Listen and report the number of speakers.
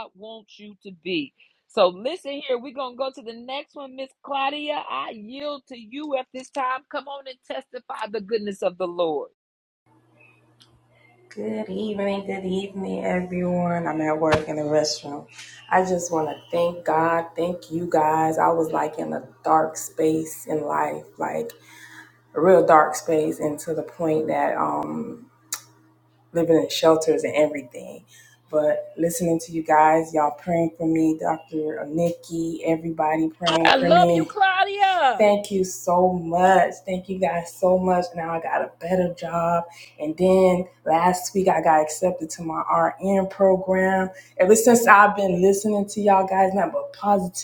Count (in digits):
3